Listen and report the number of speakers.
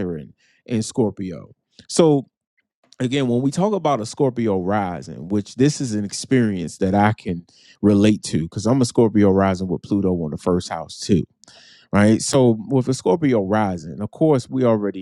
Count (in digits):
1